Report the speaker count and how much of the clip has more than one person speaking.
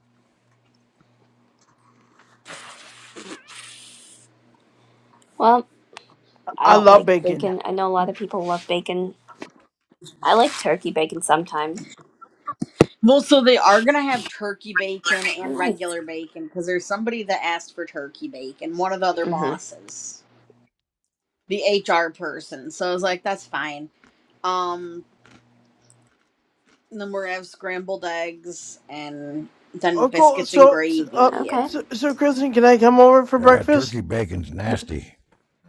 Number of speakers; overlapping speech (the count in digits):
4, about 11%